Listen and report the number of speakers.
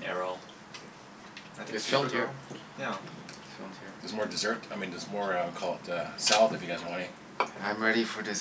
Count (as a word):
three